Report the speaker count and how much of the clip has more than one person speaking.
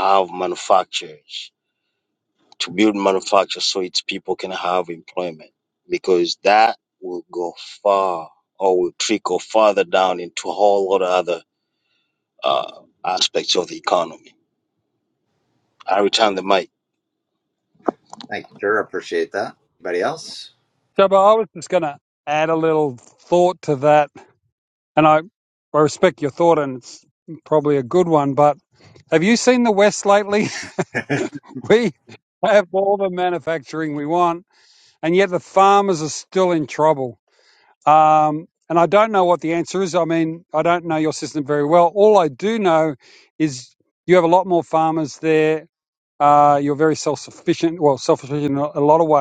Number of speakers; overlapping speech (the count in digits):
3, no overlap